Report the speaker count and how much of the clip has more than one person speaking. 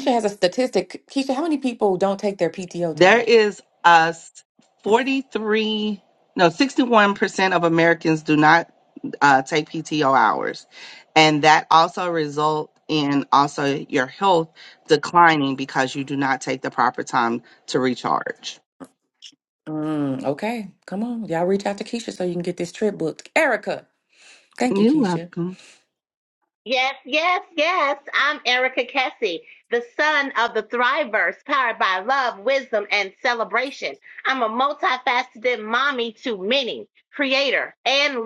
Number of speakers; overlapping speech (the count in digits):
3, about 2%